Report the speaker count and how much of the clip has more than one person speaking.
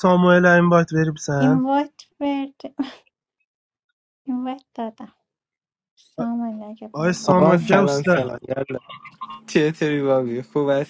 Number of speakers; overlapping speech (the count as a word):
three, about 14%